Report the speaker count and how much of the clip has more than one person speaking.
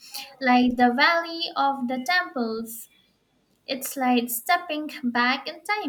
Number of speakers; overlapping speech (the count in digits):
1, no overlap